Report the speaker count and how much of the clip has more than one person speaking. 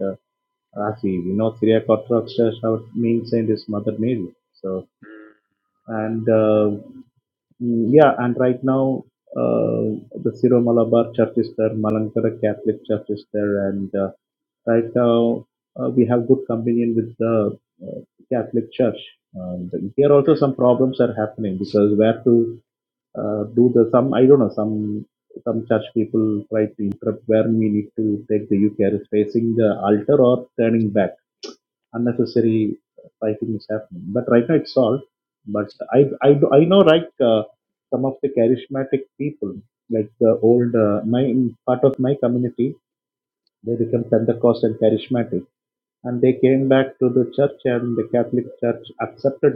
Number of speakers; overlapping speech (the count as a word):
one, no overlap